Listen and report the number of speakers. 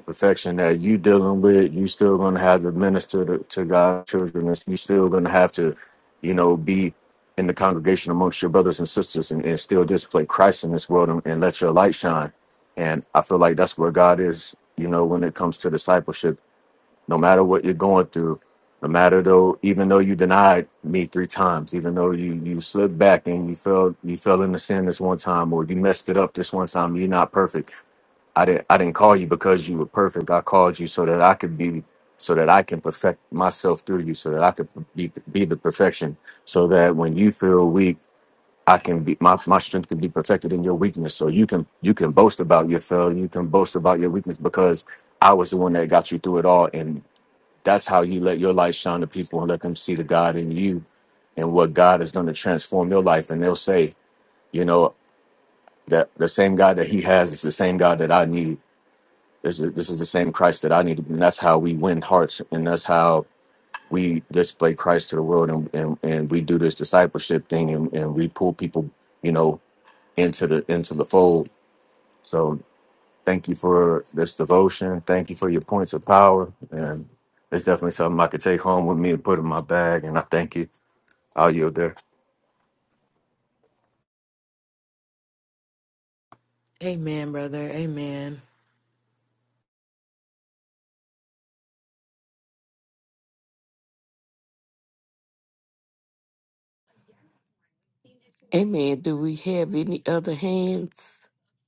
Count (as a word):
three